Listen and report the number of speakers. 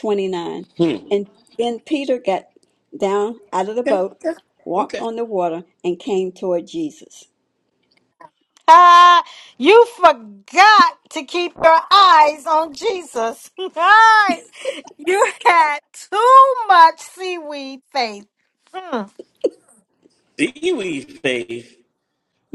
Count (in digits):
3